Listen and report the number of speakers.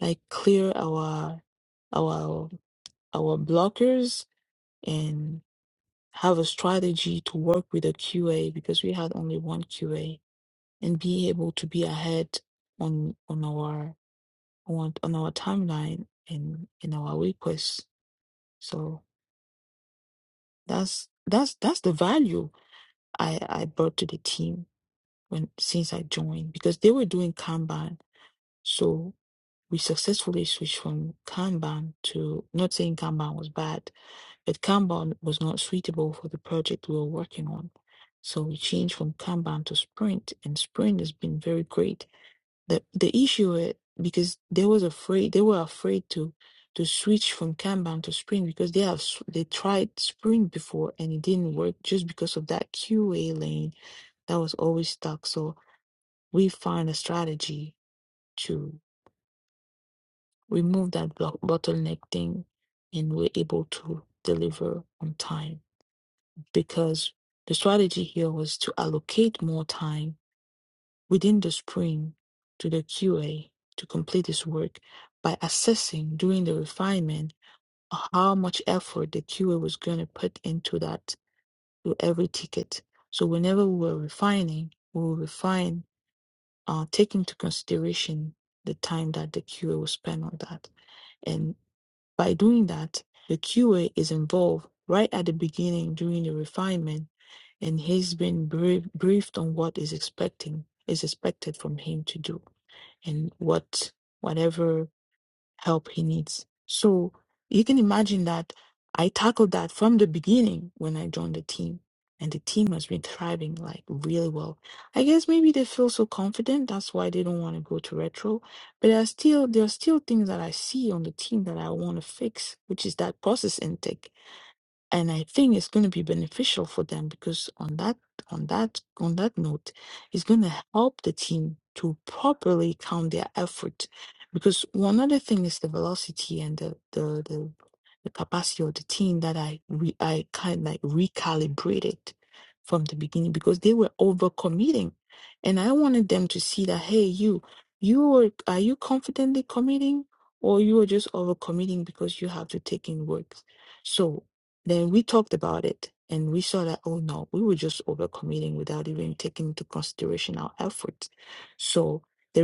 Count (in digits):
1